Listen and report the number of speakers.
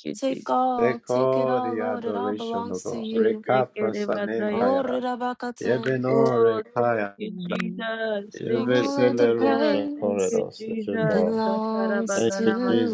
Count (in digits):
3